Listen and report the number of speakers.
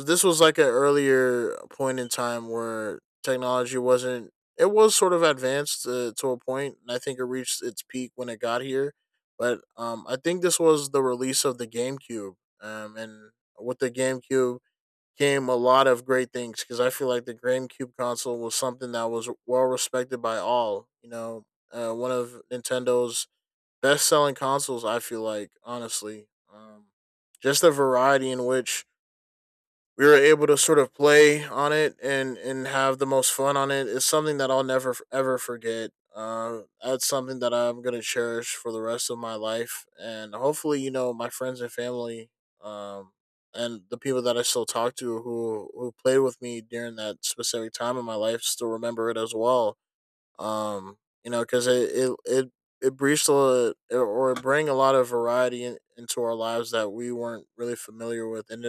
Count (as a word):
one